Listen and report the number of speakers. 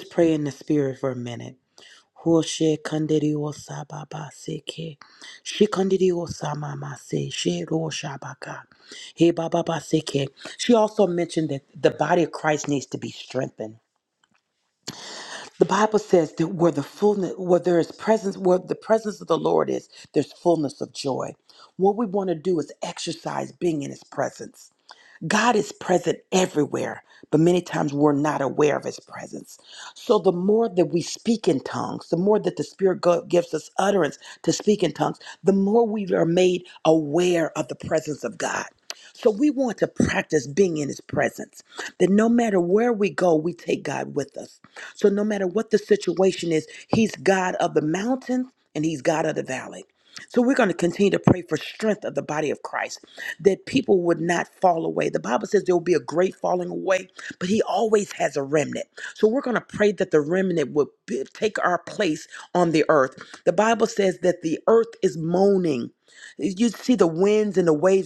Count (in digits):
1